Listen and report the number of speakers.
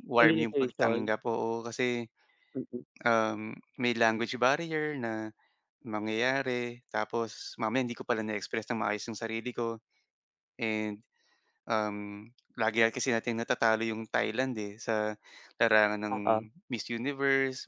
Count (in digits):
2